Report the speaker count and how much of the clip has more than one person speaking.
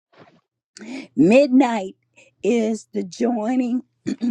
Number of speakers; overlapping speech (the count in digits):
1, no overlap